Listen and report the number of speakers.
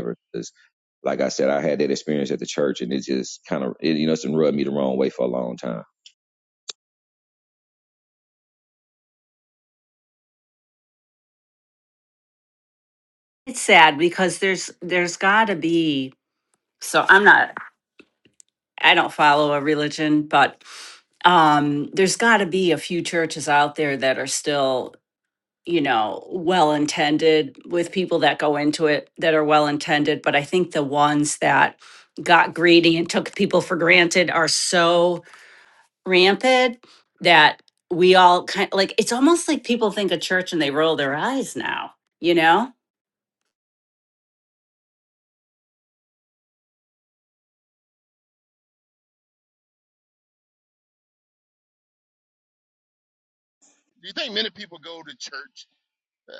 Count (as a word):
three